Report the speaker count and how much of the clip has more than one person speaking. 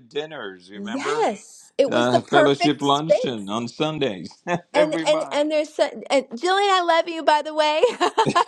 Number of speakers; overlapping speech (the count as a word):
two, about 30%